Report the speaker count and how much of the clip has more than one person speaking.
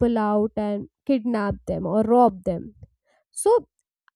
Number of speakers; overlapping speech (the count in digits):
1, no overlap